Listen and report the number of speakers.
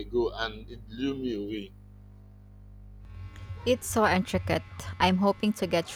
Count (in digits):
2